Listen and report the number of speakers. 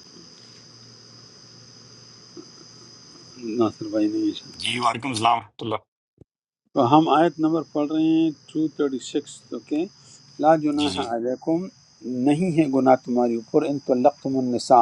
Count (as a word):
two